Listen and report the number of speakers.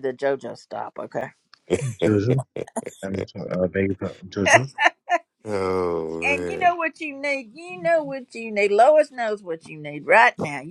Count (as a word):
three